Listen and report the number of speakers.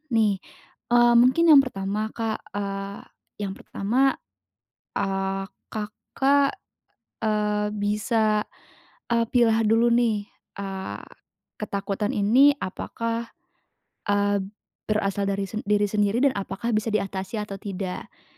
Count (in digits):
1